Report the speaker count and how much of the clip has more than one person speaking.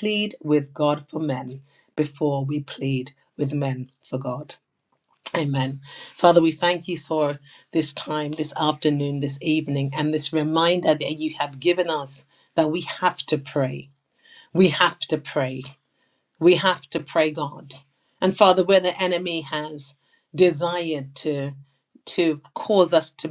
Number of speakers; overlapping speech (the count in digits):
1, no overlap